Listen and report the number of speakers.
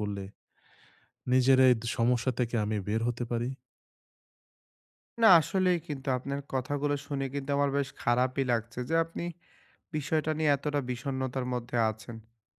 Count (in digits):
2